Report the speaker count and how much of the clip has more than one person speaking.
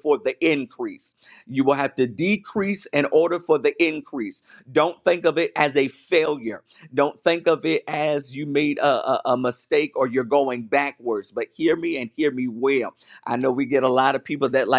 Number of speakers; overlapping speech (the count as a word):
one, no overlap